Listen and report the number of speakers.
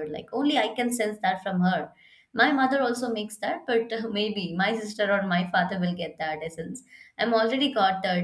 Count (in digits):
1